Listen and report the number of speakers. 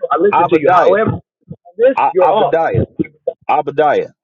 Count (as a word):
two